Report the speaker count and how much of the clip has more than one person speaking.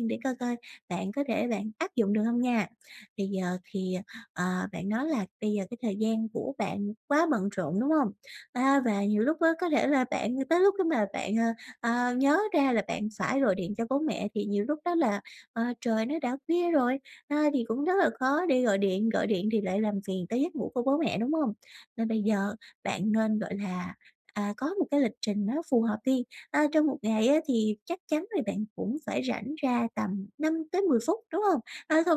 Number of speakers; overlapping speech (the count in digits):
1, no overlap